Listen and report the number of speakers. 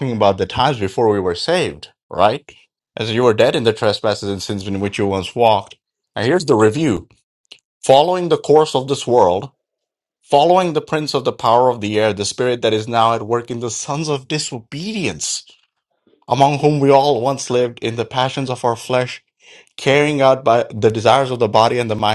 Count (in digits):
1